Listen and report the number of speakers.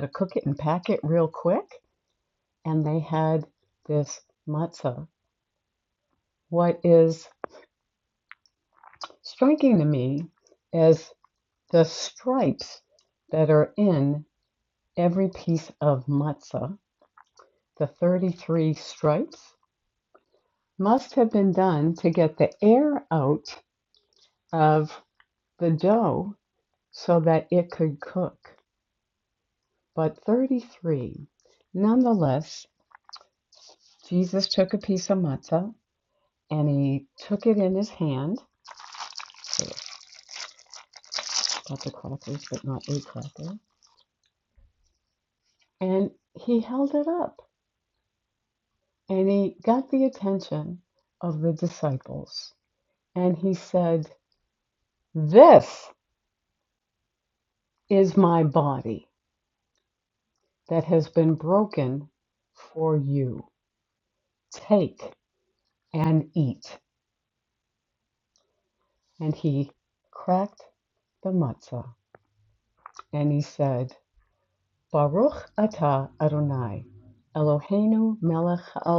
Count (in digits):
1